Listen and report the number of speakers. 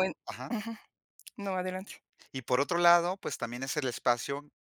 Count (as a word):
two